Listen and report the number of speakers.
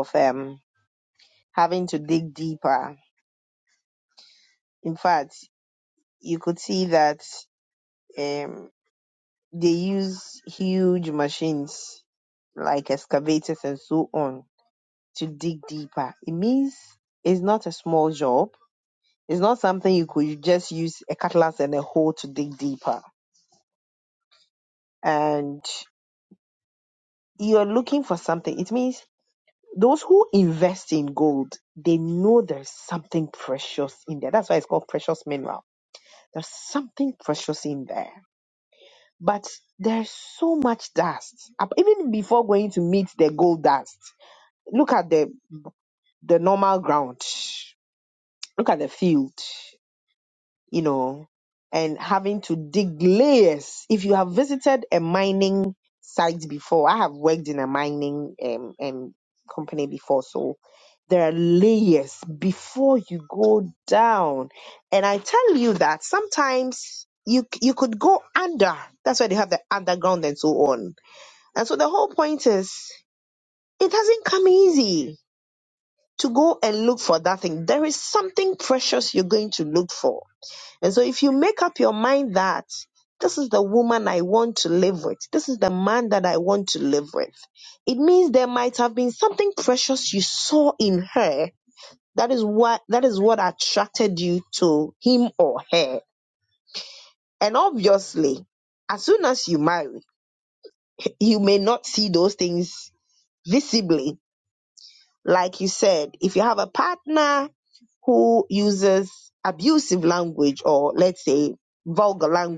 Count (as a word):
one